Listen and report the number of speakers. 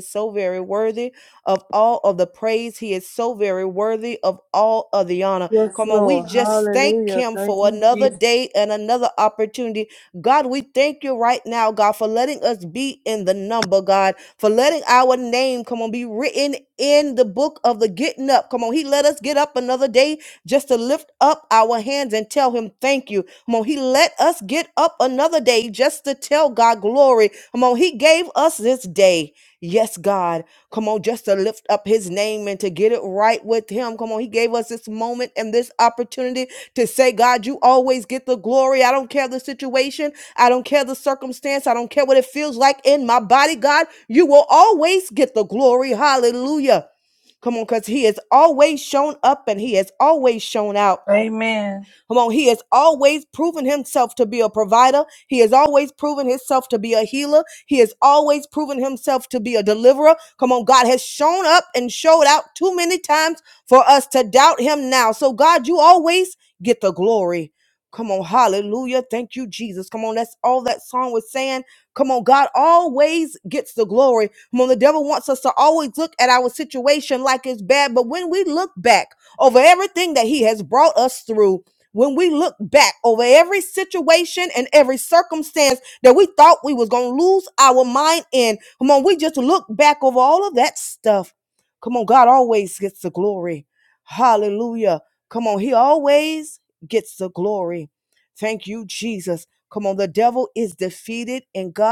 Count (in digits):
2